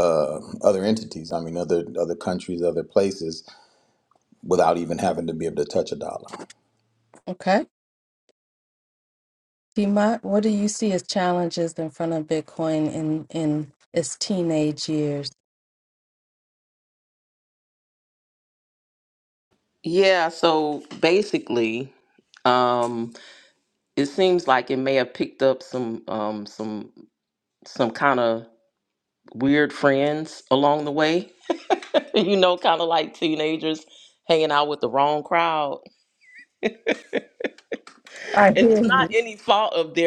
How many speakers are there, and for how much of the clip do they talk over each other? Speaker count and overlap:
three, about 1%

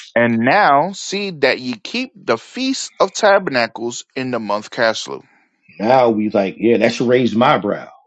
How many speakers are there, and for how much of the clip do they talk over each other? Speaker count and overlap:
two, no overlap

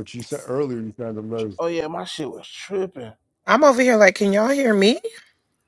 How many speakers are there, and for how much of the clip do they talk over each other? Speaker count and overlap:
three, no overlap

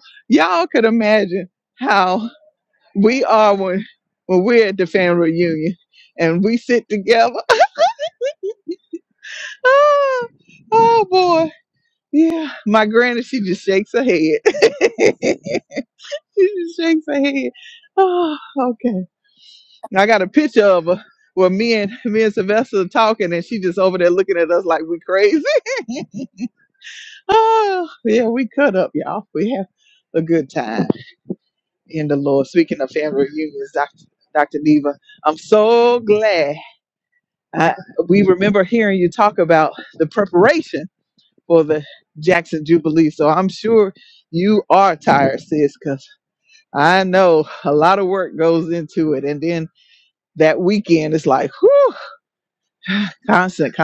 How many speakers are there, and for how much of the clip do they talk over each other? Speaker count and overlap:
one, no overlap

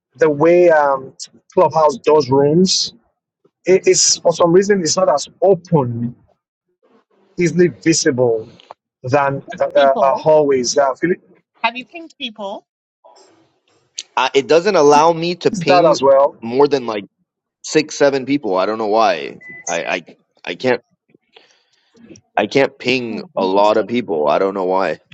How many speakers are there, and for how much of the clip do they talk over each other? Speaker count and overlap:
three, about 7%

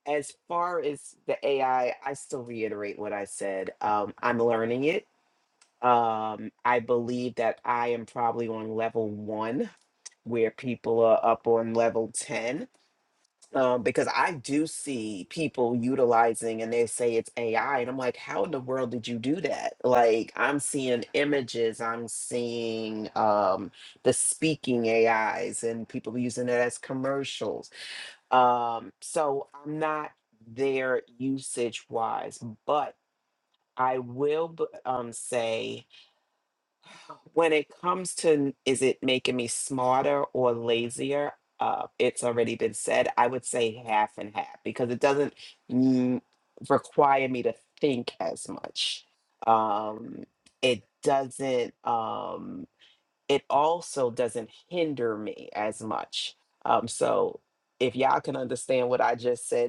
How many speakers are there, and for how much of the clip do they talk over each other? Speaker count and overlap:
one, no overlap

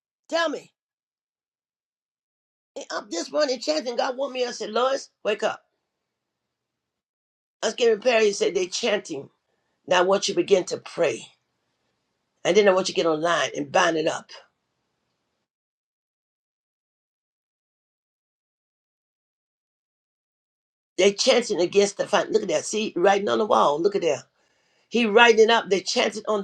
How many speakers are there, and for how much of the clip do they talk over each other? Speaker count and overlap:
one, no overlap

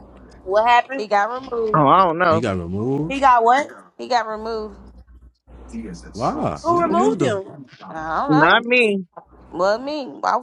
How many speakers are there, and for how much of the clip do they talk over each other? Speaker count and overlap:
four, about 12%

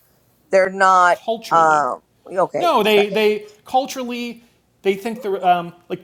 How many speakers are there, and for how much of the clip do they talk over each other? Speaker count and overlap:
two, about 15%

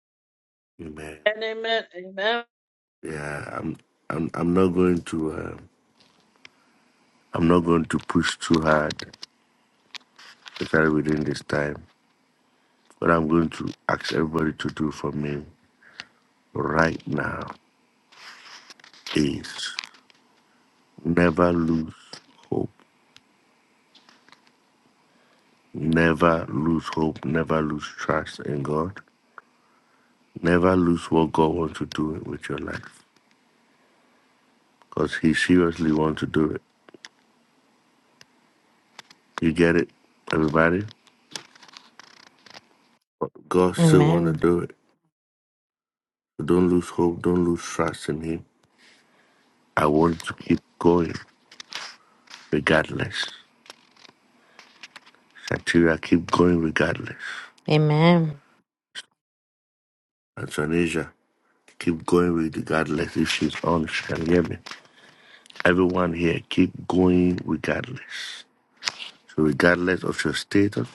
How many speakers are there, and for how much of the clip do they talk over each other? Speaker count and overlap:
three, about 1%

